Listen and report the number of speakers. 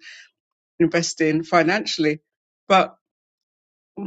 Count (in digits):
1